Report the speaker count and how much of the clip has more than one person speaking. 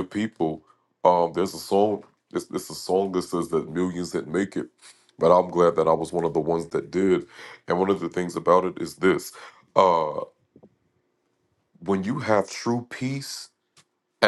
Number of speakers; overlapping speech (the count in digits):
1, no overlap